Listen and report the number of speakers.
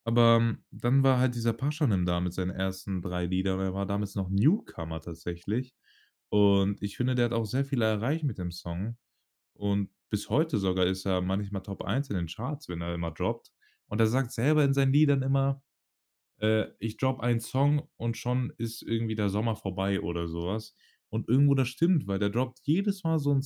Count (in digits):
1